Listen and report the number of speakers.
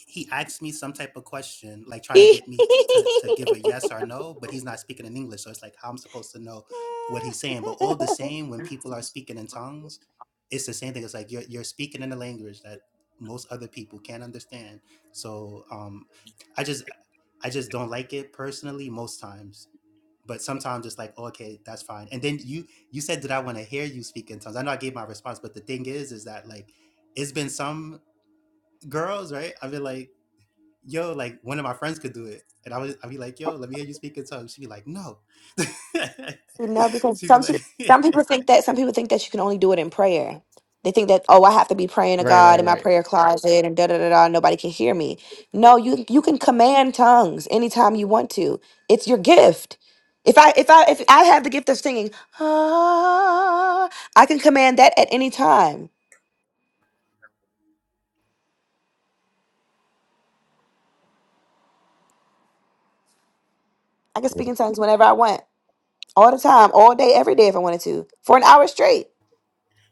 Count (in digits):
2